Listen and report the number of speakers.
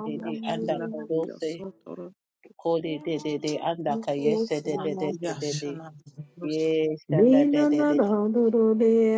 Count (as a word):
three